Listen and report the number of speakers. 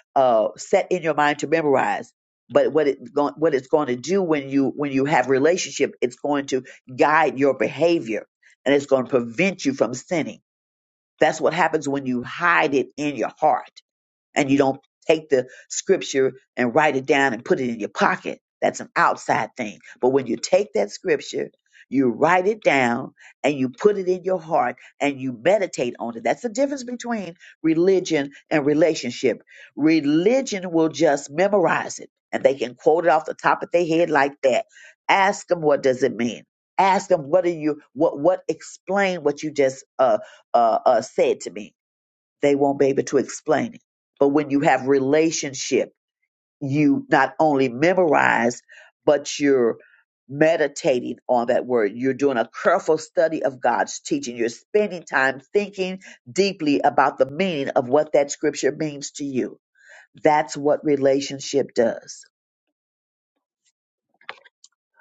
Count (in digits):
1